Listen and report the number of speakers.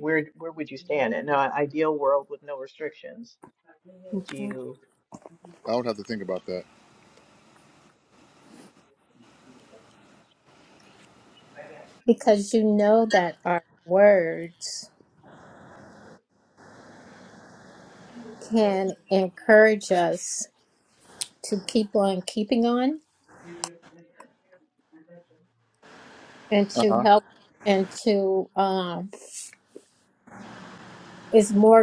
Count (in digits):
3